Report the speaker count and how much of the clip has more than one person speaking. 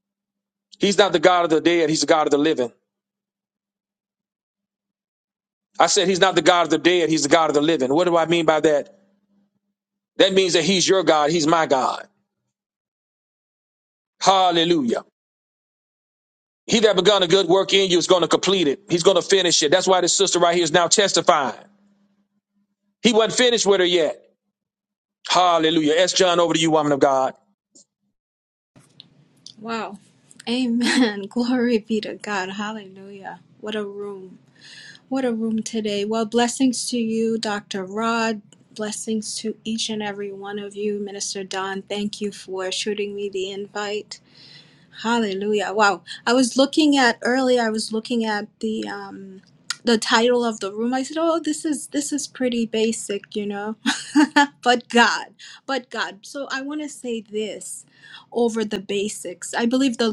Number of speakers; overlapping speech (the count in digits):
2, no overlap